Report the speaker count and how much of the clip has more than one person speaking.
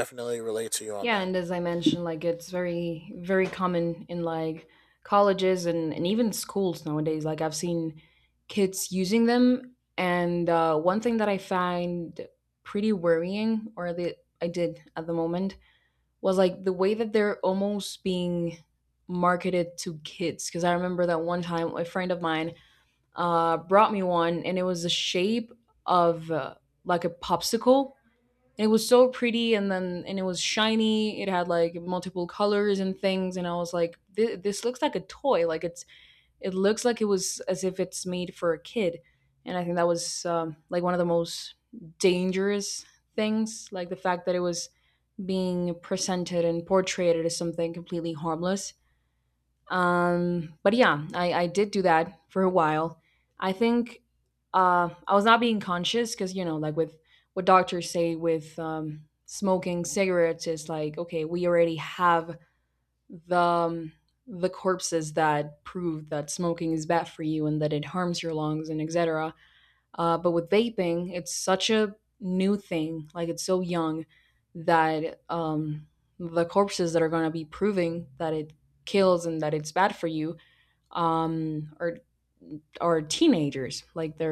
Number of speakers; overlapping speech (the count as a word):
two, under 1%